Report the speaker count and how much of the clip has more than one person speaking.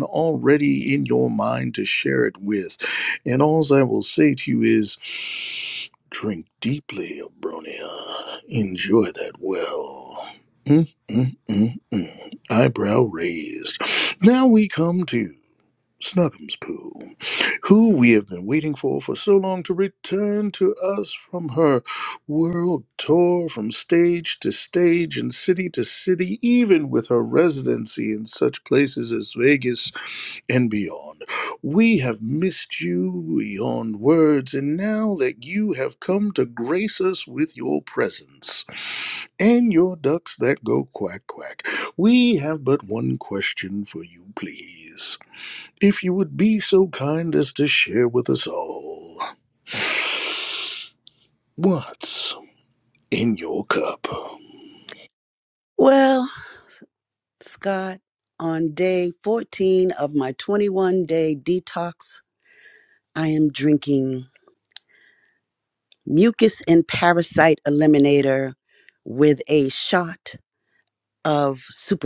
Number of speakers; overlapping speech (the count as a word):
two, no overlap